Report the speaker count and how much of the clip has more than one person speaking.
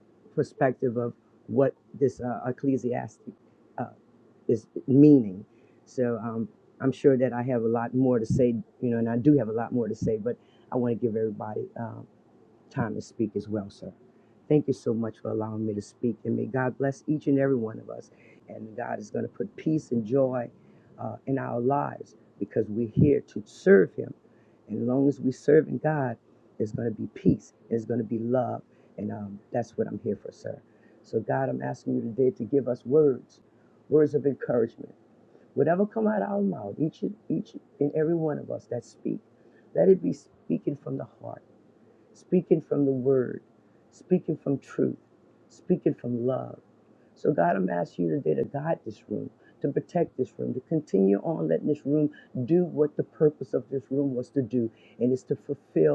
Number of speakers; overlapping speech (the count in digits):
1, no overlap